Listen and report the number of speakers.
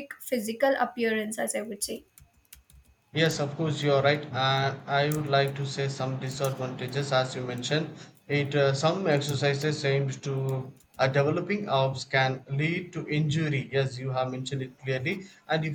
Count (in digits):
2